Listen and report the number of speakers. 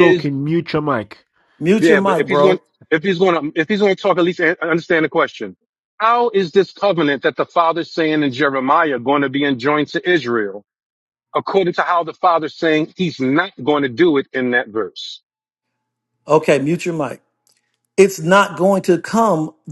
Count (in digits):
3